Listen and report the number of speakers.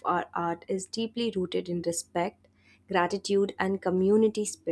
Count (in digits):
1